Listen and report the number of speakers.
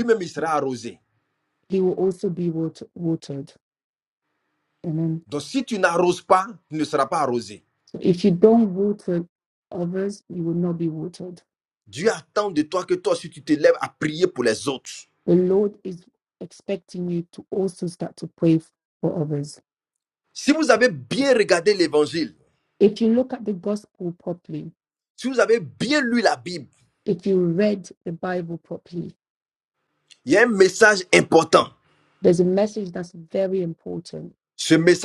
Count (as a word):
two